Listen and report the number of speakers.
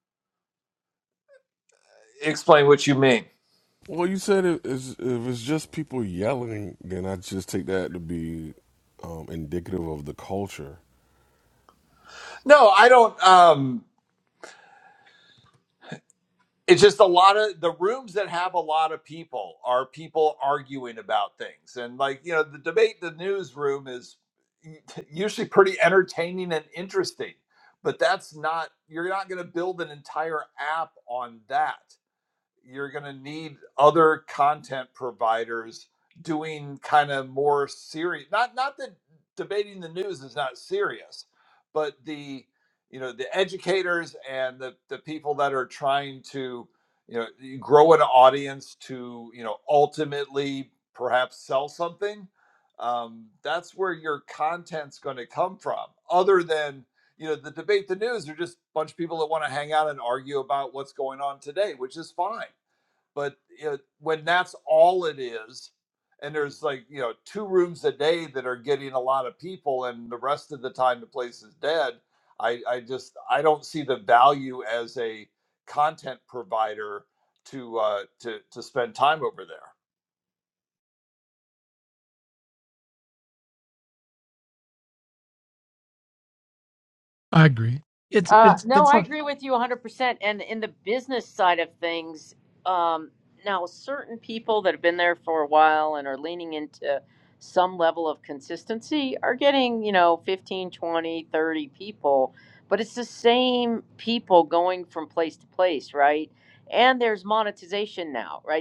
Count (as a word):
four